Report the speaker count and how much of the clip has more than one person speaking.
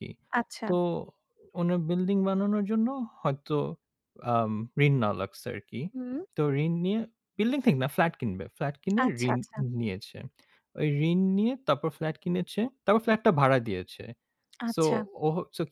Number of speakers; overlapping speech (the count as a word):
two, about 4%